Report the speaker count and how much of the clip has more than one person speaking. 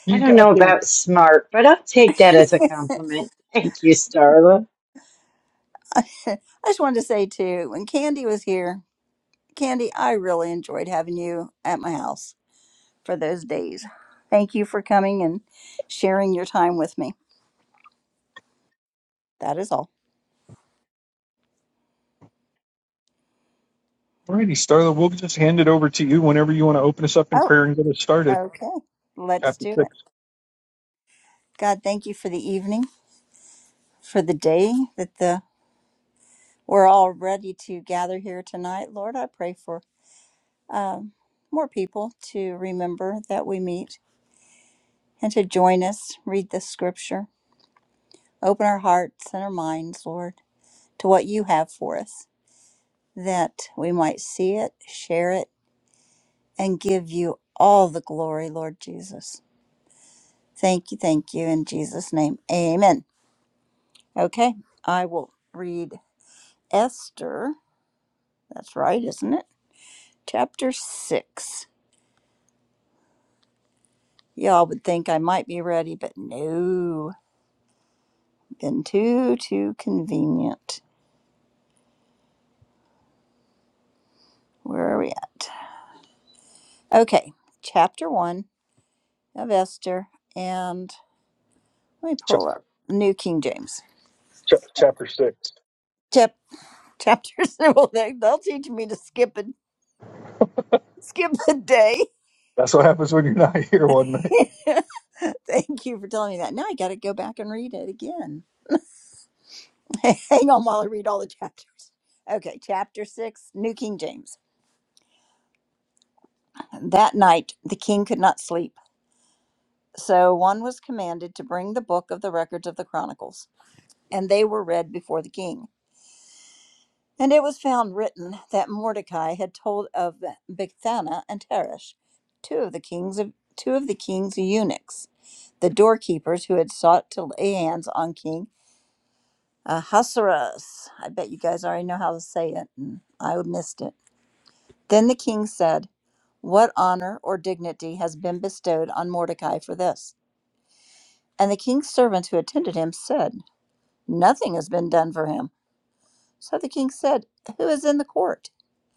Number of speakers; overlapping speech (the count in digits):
3, about 1%